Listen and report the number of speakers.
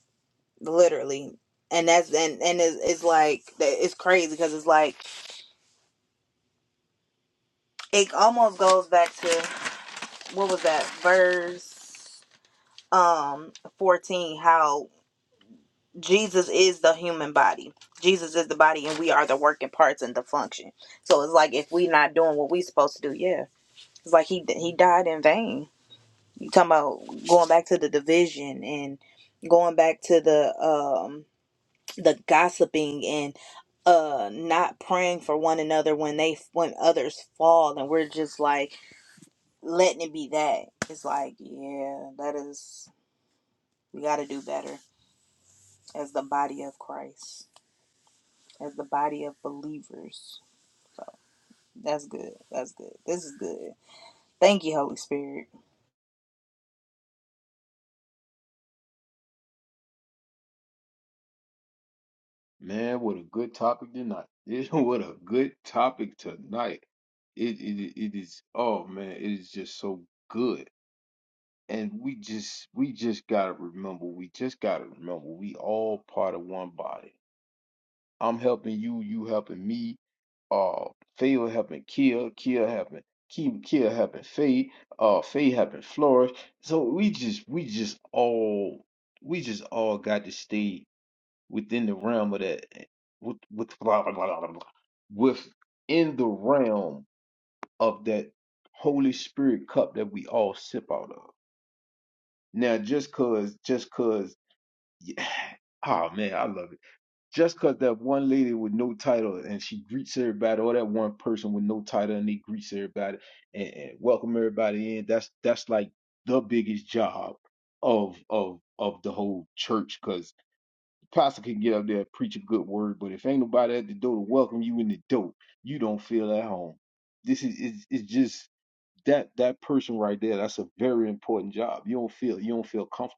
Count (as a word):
two